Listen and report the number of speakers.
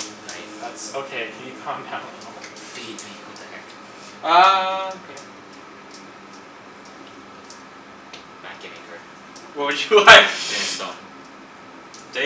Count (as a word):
three